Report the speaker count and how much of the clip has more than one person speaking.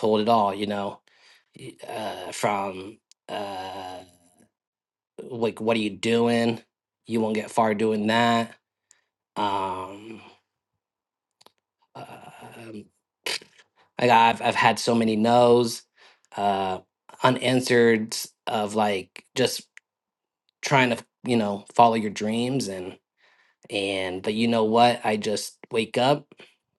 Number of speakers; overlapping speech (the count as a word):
one, no overlap